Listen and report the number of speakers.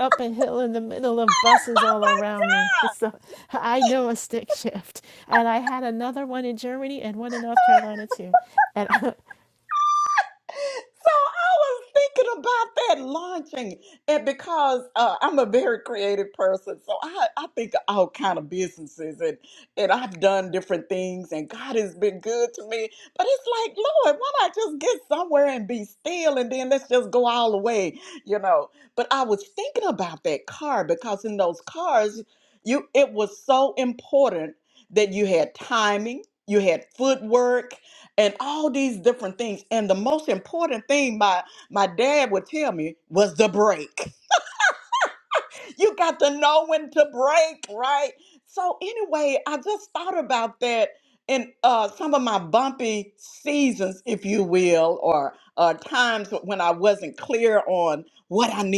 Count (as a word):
two